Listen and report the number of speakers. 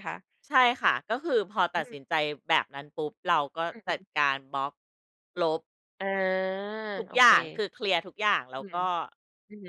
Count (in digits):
2